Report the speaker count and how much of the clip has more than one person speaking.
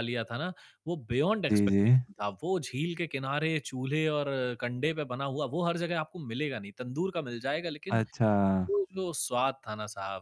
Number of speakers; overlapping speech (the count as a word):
two, about 6%